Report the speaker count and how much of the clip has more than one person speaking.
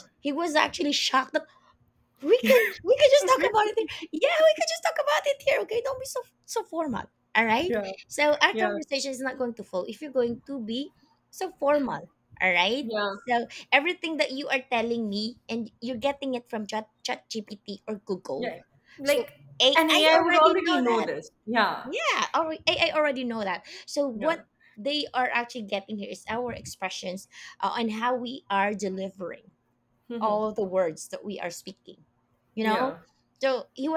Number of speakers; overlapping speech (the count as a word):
two, about 8%